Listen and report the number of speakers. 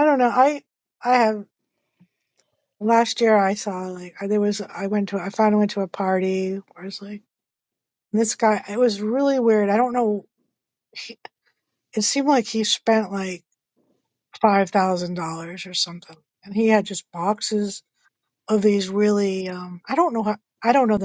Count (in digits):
1